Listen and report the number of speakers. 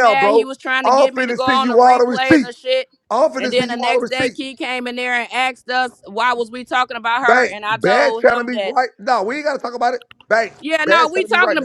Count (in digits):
2